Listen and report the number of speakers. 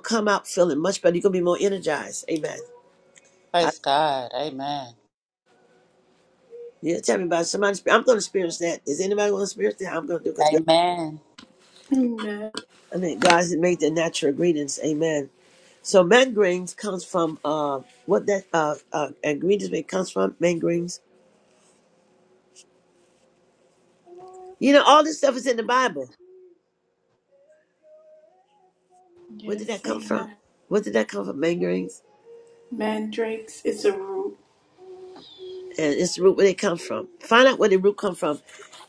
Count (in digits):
3